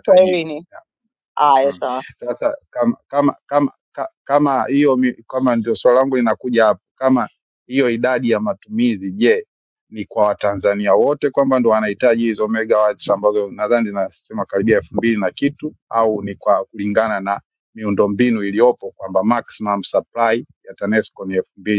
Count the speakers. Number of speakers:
2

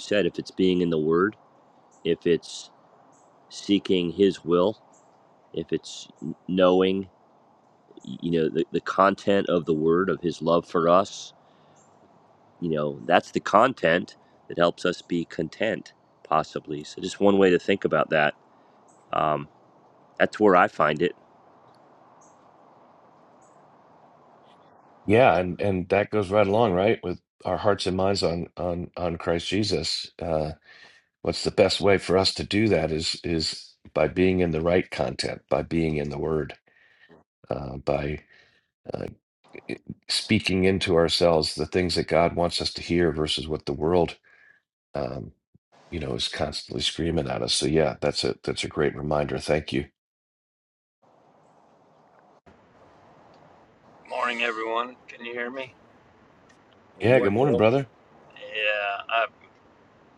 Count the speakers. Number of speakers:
3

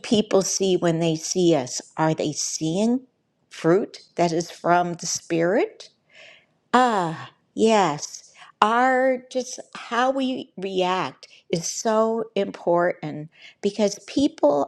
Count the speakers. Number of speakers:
1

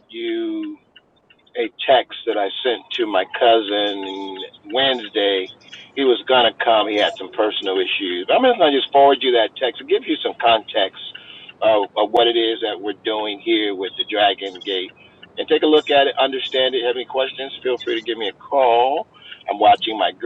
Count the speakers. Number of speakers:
1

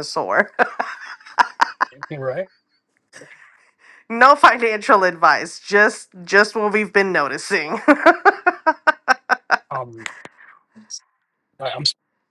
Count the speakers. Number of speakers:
2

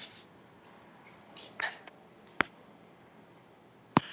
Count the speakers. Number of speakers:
0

